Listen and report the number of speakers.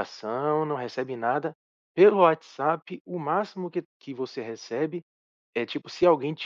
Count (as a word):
one